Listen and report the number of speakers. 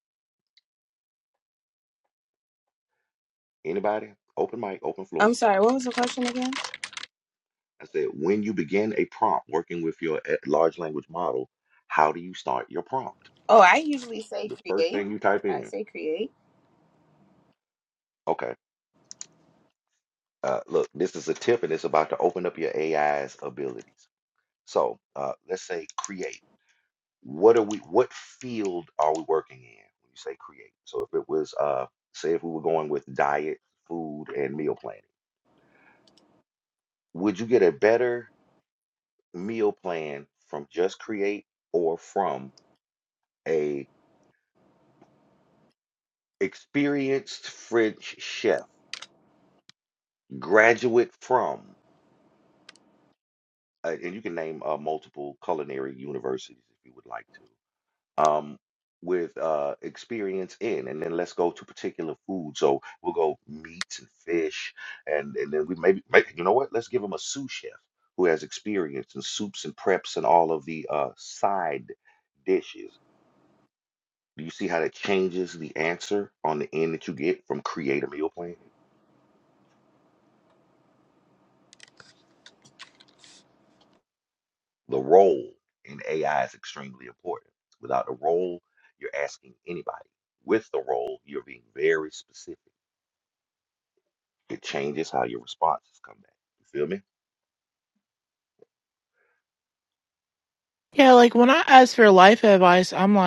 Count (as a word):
three